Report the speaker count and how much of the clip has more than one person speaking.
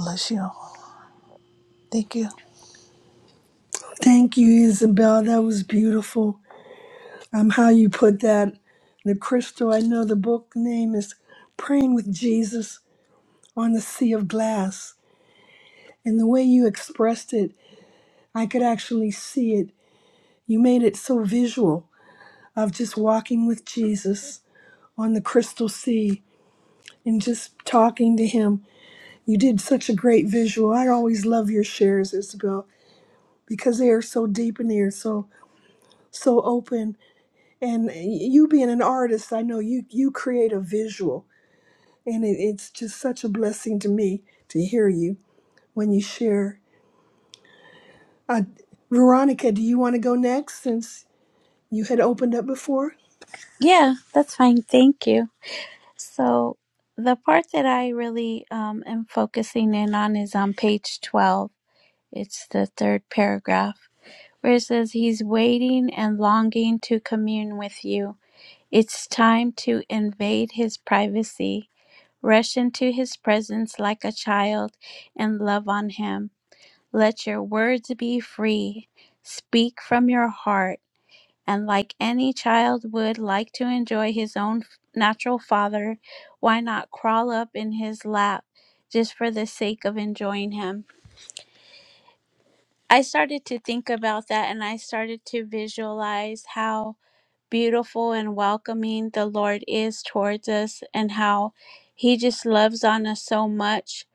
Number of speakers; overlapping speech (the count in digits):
3, no overlap